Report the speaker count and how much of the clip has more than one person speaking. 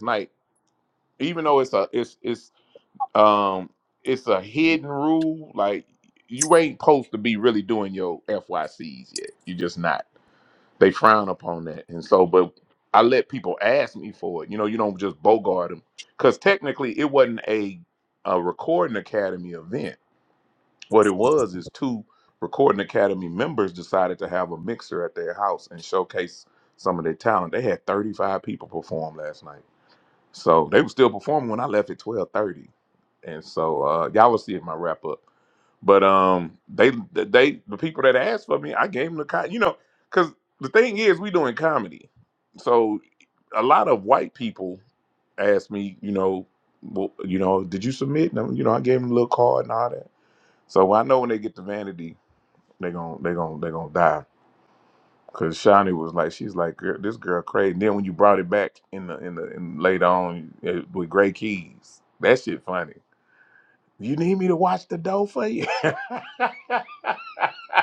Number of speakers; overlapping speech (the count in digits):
1, no overlap